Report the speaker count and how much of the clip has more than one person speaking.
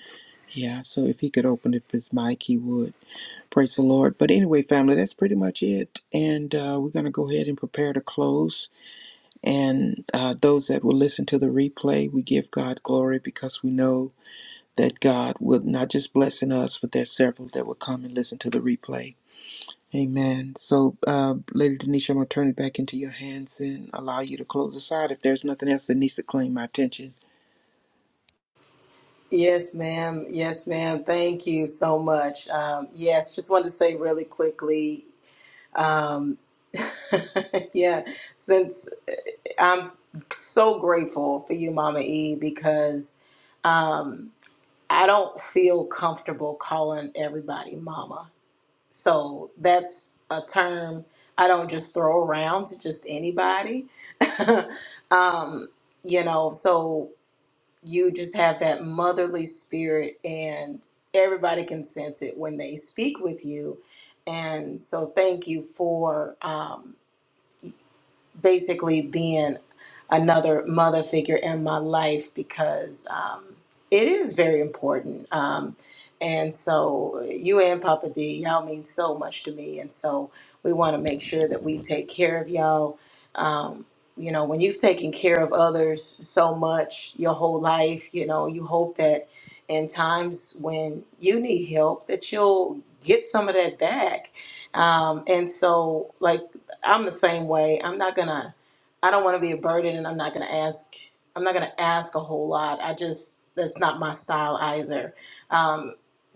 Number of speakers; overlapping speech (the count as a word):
two, no overlap